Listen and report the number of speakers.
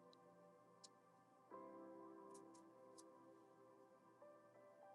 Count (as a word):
zero